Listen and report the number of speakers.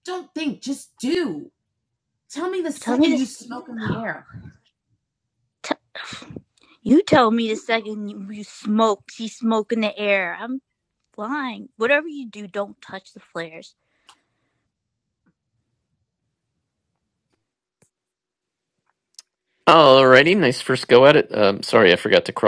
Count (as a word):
three